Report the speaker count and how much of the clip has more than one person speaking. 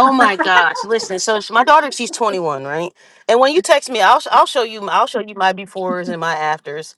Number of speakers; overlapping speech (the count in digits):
1, no overlap